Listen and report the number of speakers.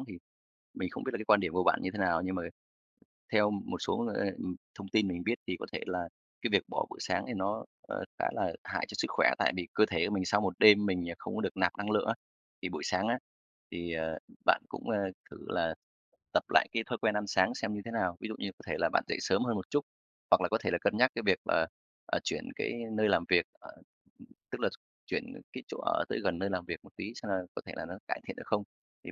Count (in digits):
1